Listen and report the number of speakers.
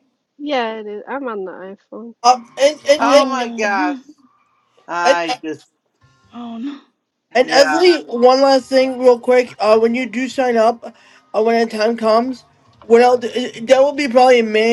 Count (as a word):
four